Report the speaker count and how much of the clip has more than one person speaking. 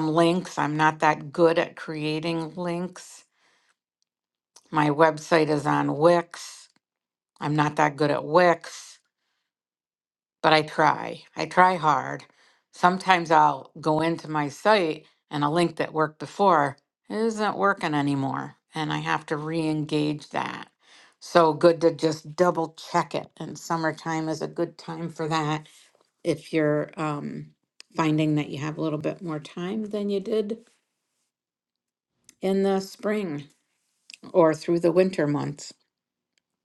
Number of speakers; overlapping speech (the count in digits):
1, no overlap